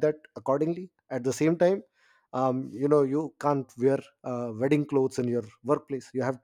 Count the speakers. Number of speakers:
one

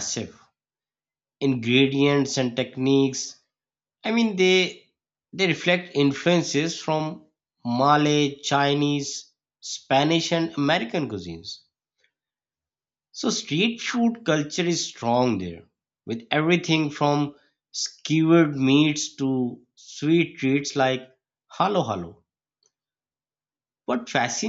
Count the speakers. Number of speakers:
one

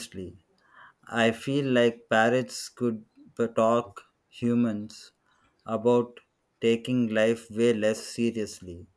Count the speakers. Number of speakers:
one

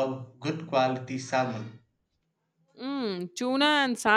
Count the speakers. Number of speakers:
two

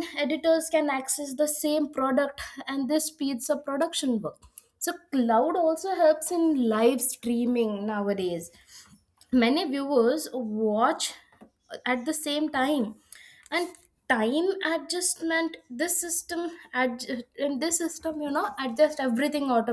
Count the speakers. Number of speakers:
one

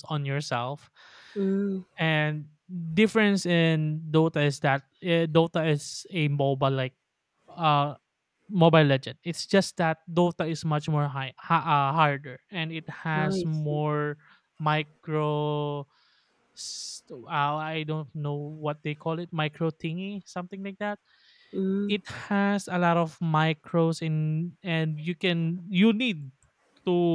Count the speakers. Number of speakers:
two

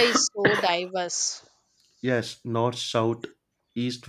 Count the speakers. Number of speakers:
two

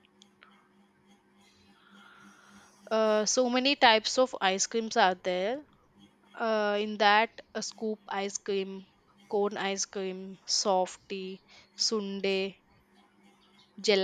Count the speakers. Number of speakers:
one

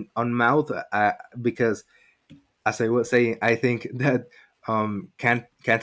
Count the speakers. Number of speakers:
one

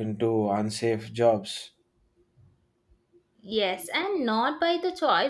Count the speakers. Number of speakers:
two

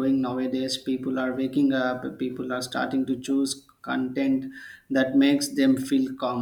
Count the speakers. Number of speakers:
one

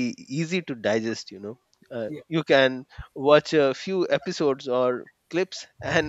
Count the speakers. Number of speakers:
one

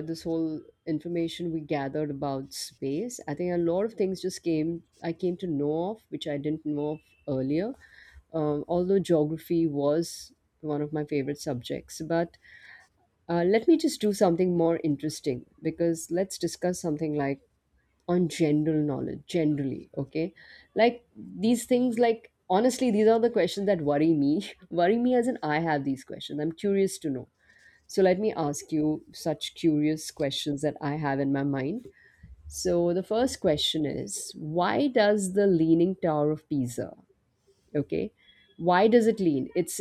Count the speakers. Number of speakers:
one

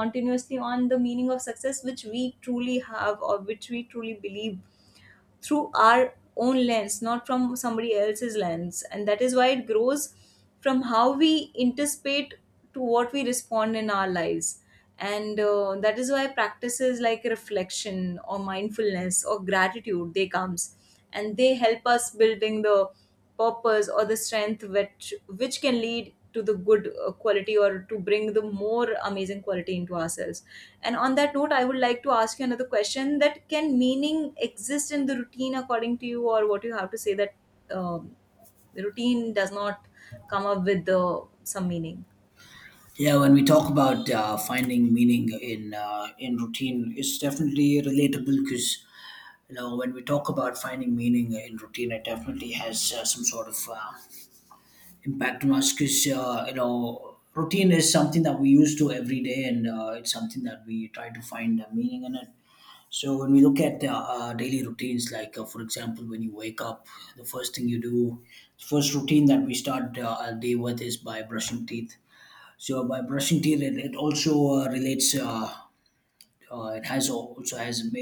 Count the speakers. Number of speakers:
two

